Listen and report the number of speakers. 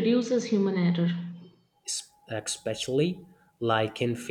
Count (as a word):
two